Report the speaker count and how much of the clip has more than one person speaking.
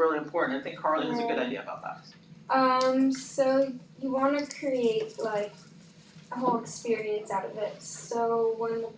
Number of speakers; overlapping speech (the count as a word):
two, about 6%